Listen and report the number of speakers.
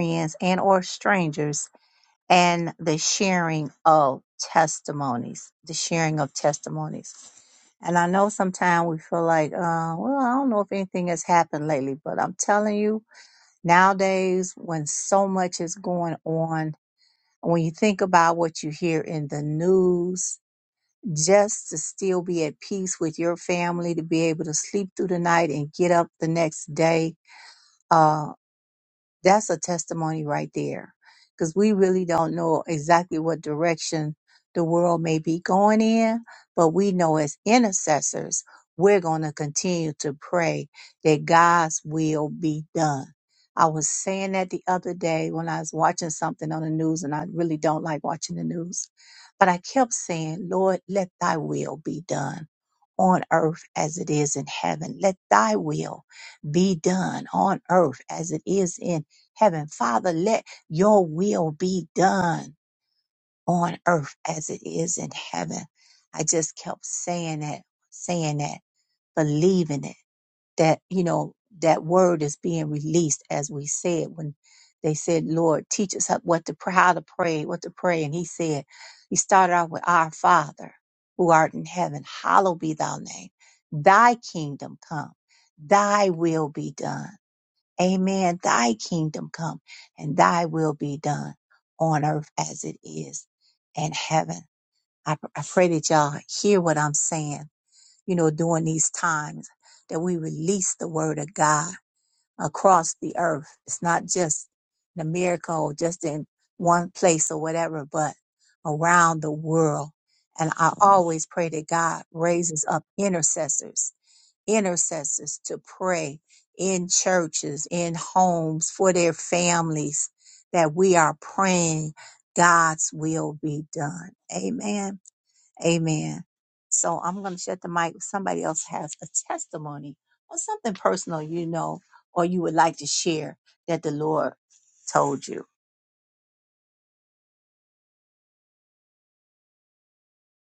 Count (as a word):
one